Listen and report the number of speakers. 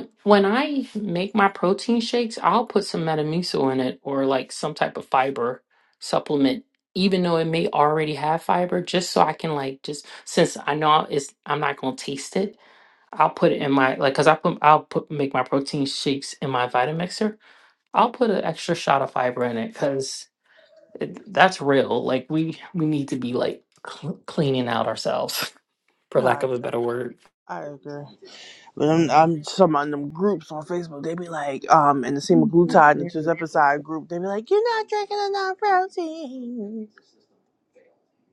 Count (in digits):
2